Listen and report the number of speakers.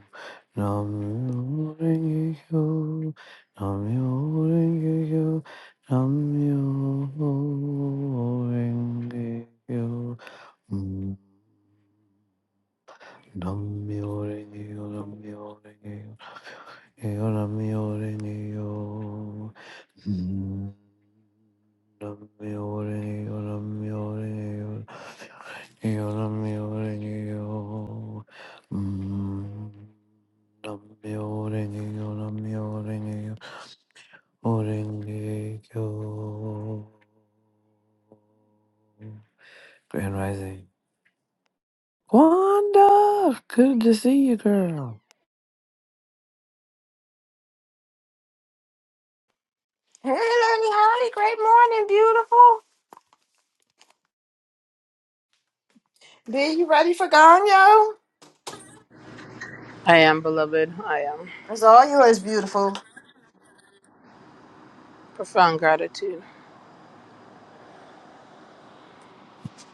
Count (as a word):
three